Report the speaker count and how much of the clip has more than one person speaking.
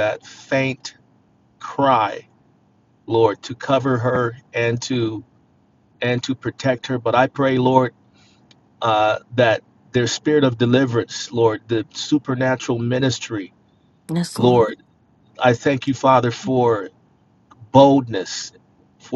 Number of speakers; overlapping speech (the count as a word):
one, no overlap